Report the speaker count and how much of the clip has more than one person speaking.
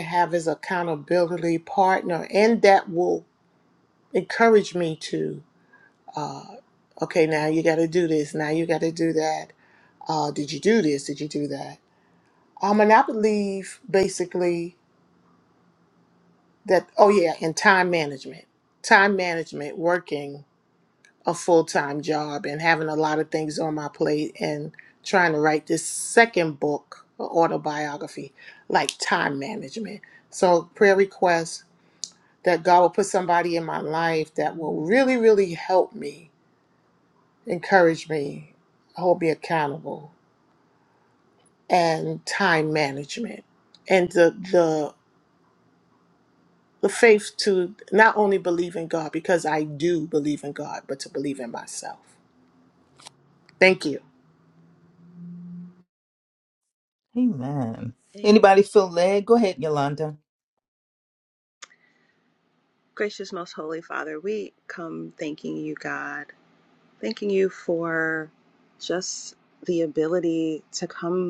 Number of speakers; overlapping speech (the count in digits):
3, under 1%